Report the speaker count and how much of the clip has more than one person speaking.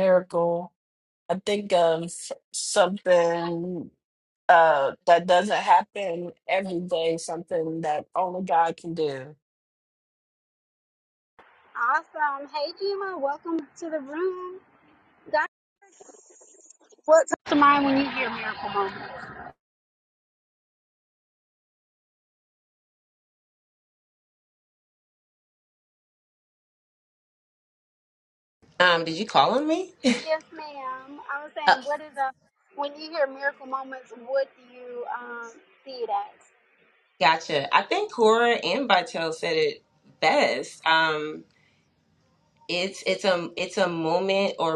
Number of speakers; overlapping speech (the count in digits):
3, under 1%